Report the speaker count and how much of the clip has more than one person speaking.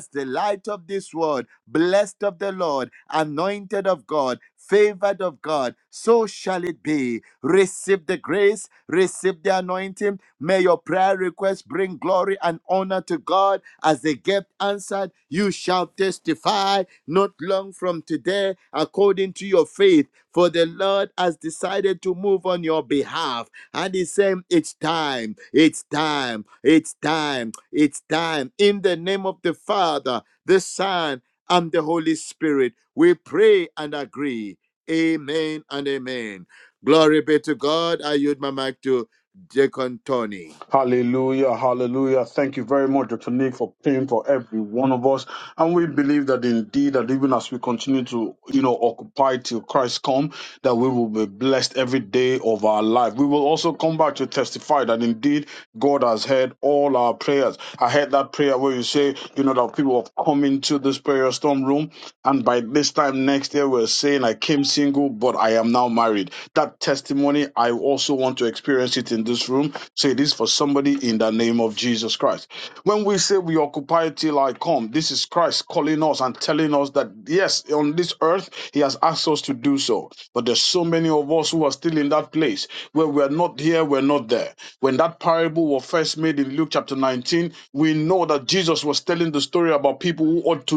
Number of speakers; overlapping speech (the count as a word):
two, no overlap